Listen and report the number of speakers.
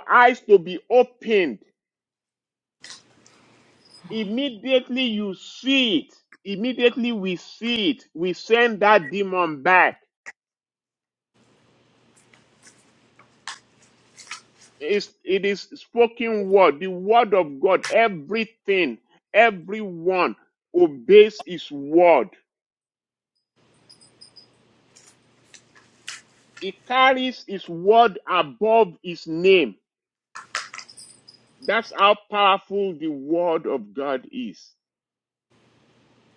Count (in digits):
1